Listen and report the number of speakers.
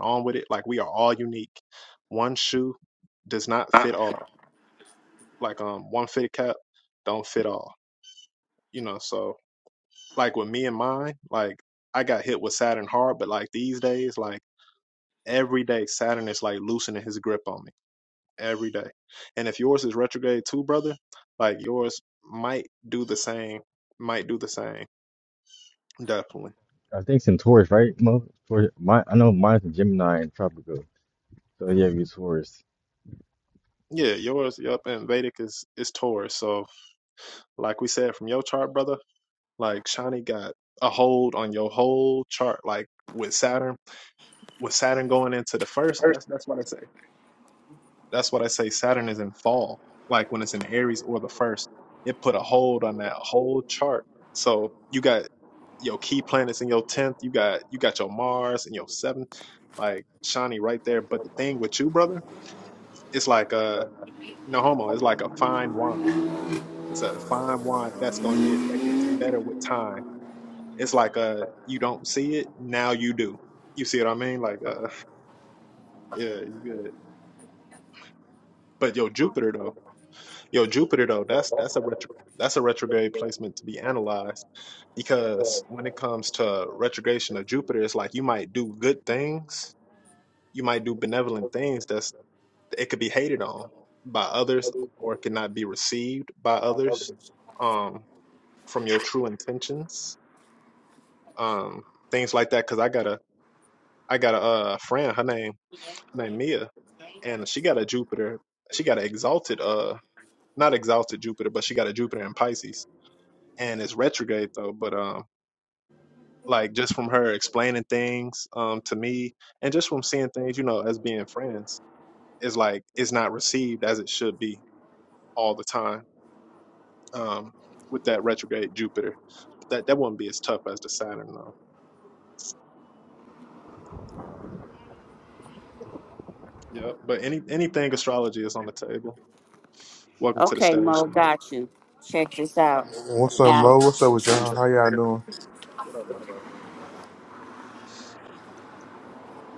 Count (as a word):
four